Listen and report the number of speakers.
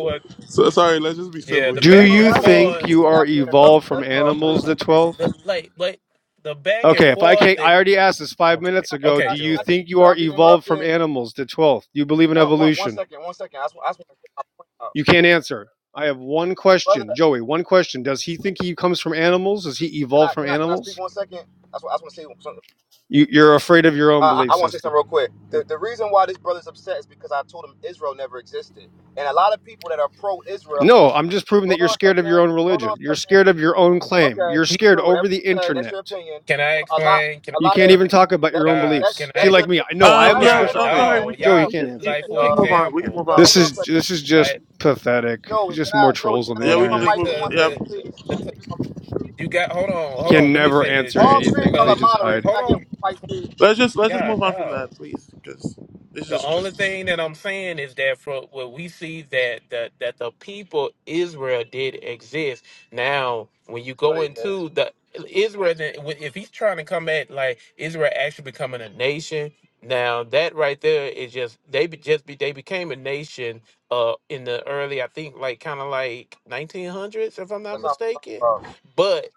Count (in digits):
4